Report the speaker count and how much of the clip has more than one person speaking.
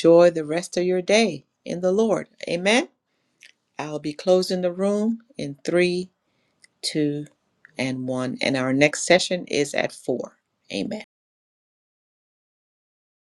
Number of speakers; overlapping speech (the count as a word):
one, no overlap